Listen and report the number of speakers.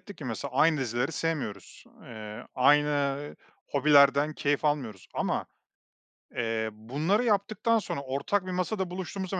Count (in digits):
1